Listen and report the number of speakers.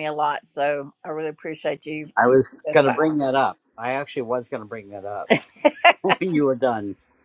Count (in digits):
2